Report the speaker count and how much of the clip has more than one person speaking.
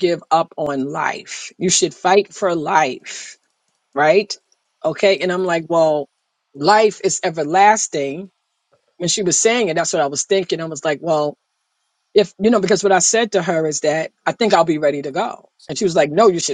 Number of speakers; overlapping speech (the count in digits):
1, no overlap